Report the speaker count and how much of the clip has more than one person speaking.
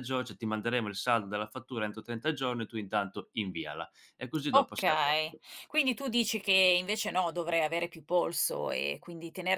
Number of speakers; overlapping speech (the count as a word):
two, about 9%